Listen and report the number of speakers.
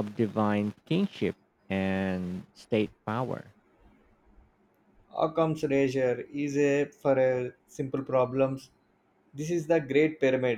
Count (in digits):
2